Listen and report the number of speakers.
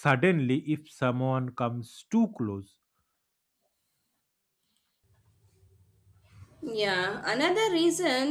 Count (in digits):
2